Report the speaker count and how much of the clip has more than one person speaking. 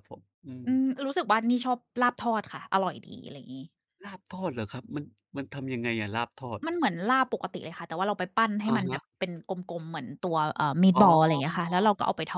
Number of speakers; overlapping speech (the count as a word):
two, about 5%